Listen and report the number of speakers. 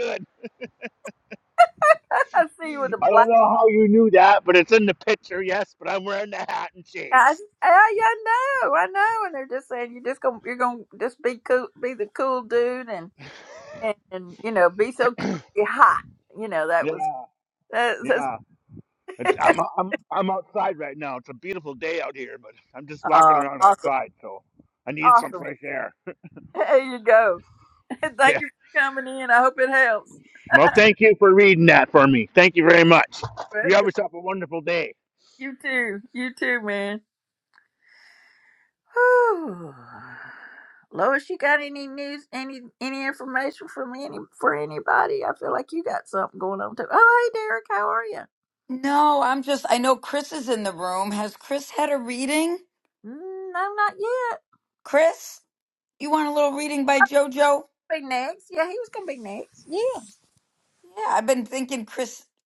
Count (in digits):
3